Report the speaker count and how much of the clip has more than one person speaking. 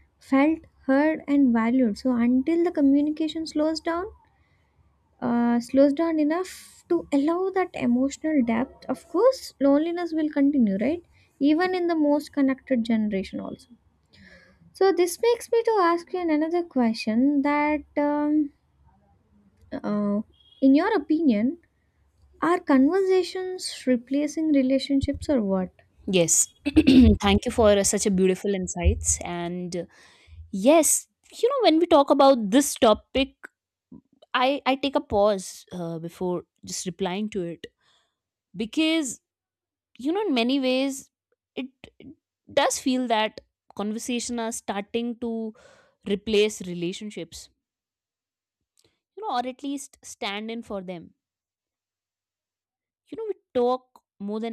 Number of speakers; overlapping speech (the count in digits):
2, no overlap